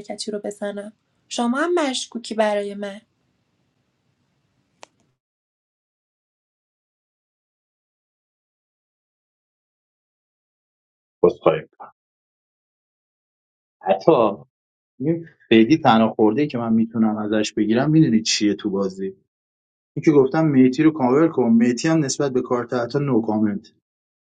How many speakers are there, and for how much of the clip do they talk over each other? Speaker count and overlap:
two, no overlap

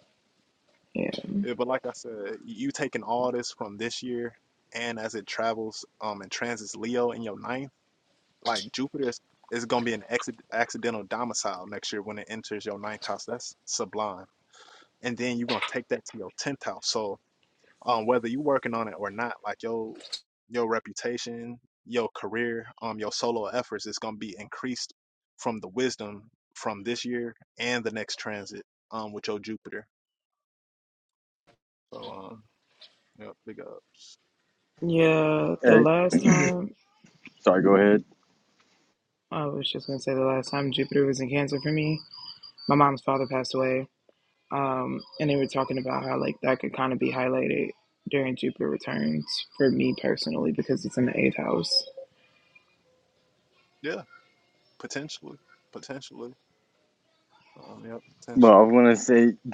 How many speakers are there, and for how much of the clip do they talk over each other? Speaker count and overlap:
three, about 1%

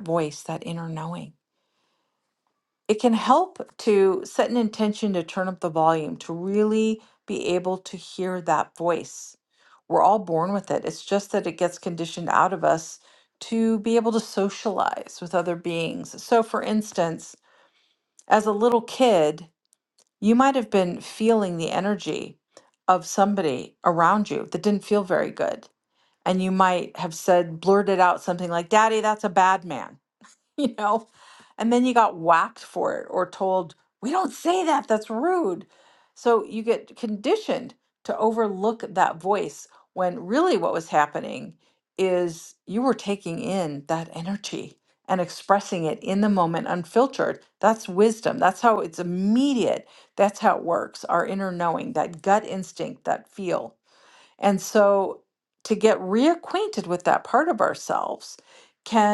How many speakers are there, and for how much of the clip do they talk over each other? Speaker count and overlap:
one, no overlap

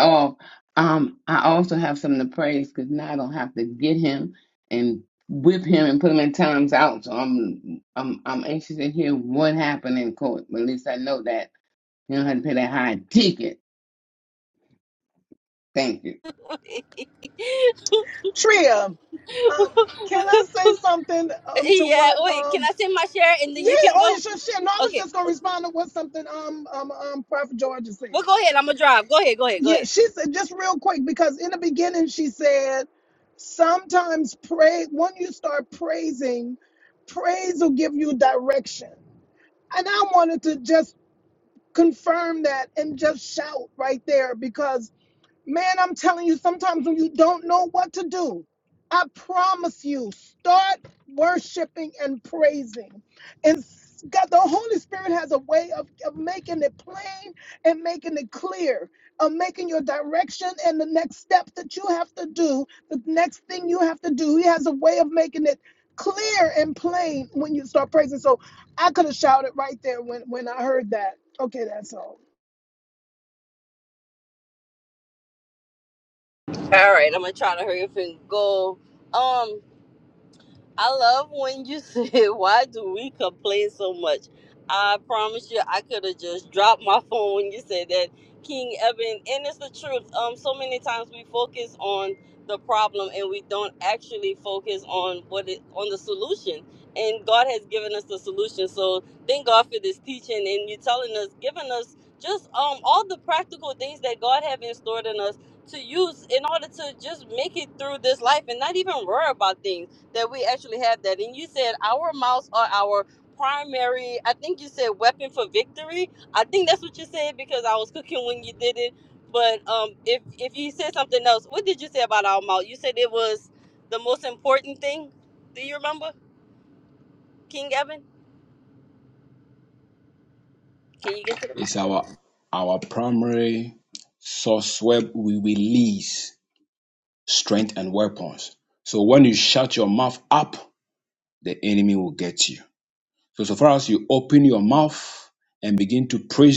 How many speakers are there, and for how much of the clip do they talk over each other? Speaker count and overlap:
four, about 1%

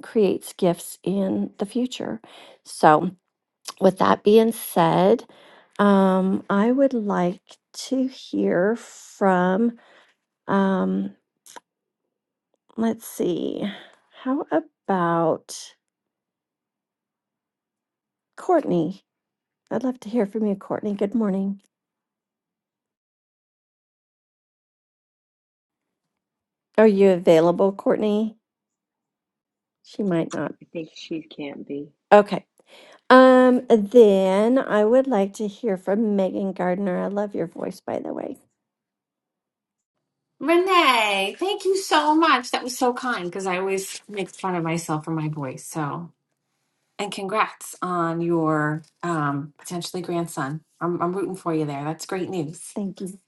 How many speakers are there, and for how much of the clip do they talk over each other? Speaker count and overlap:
three, no overlap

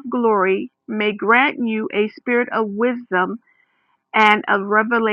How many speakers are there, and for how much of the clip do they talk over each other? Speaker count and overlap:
one, no overlap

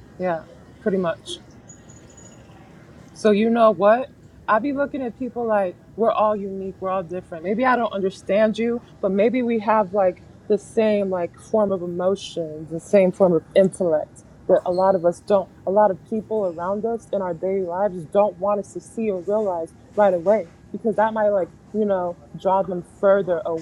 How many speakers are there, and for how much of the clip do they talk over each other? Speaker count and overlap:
one, no overlap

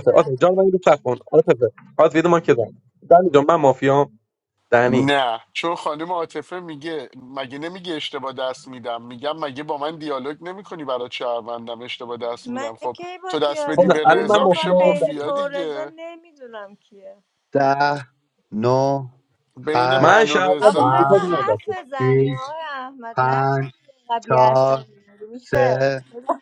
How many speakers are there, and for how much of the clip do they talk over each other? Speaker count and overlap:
four, about 30%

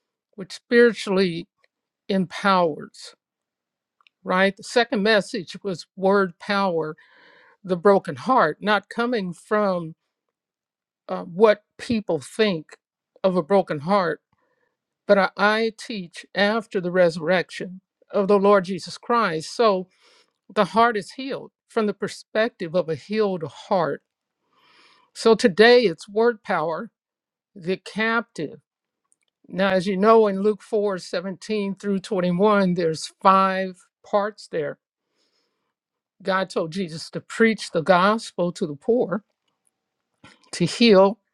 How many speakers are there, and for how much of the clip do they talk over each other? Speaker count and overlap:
one, no overlap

